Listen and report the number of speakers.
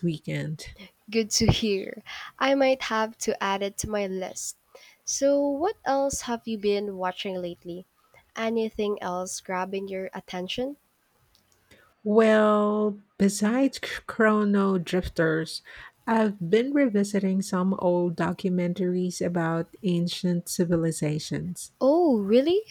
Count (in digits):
2